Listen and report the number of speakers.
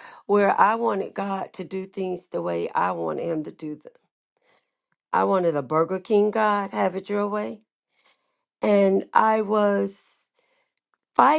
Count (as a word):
one